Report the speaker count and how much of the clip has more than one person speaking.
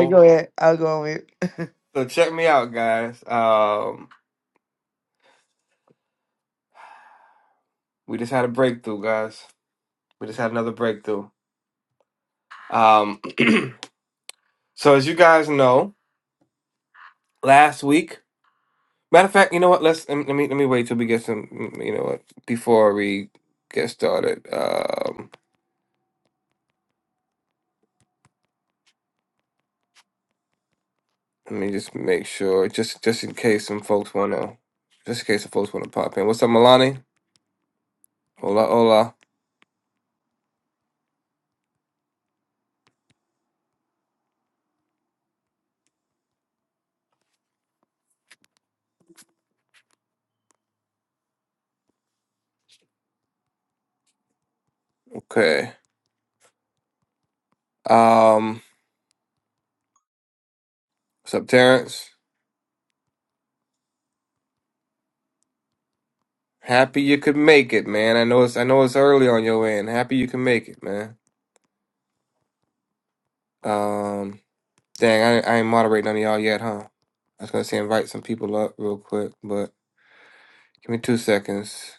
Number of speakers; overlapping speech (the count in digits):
2, under 1%